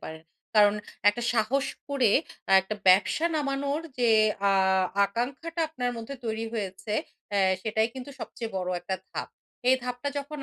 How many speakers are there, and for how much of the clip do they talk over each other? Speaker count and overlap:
1, no overlap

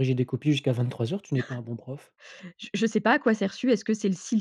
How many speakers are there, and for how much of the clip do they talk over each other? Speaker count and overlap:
2, no overlap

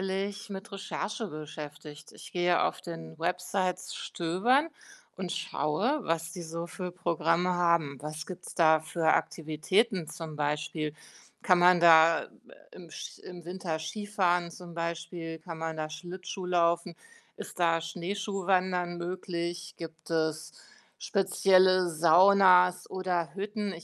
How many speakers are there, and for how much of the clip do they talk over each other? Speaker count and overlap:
1, no overlap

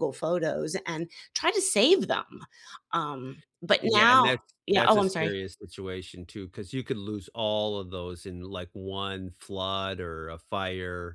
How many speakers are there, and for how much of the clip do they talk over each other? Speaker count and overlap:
2, about 9%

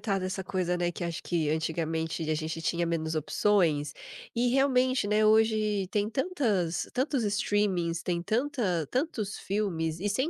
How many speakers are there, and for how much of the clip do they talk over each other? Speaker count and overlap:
1, no overlap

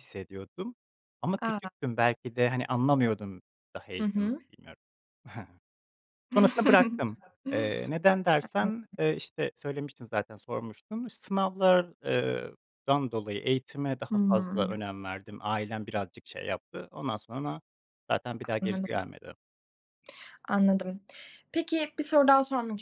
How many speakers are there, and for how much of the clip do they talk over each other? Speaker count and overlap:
2, about 8%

